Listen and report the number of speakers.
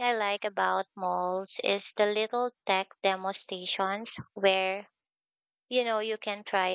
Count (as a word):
one